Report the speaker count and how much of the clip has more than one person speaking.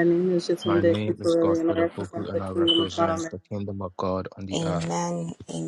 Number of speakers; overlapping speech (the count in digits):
3, about 55%